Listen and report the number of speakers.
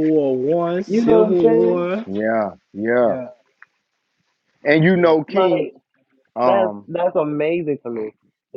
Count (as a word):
three